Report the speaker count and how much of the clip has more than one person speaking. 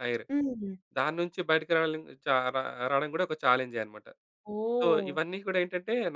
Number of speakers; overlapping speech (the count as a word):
two, about 6%